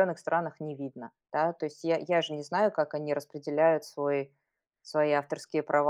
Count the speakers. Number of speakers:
1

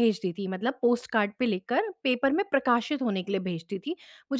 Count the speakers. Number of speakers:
1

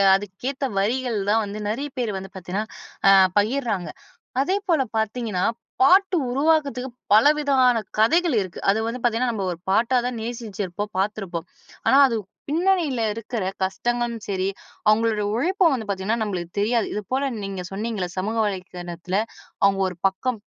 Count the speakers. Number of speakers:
1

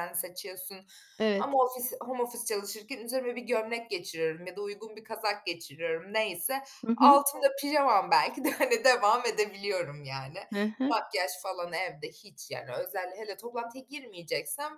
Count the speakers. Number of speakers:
2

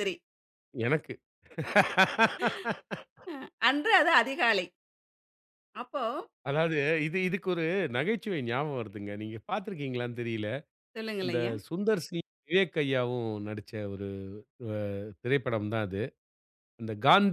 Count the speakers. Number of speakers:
2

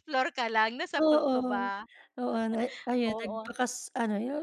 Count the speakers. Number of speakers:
2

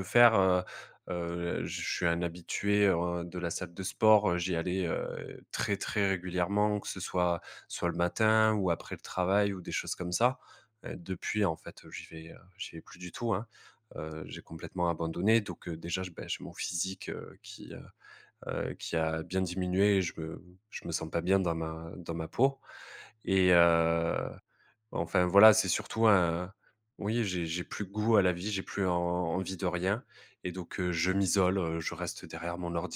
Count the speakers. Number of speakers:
1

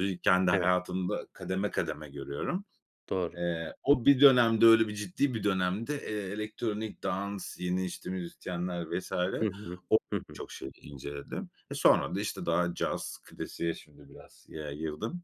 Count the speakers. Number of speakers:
2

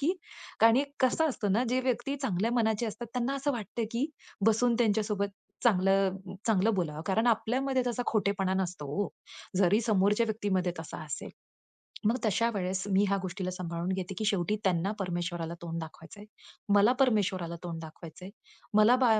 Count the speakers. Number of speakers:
1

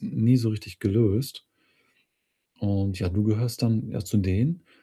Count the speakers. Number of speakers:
1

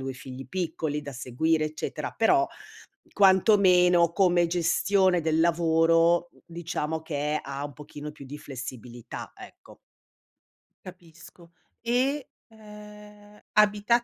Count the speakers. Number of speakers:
2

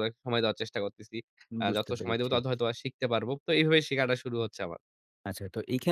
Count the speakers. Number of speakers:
2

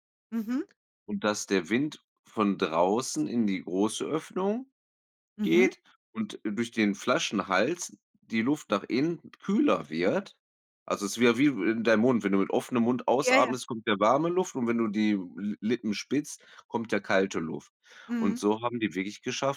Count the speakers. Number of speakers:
2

